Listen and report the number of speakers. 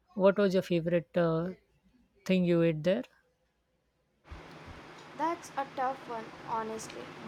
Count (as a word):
two